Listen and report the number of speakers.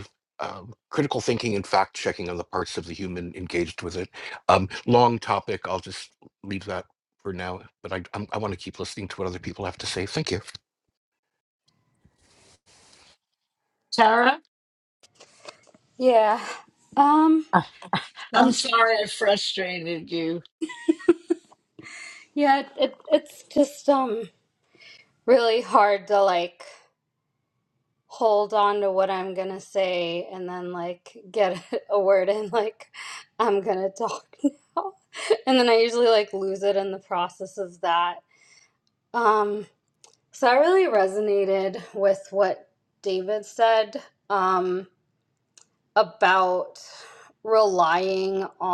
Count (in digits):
3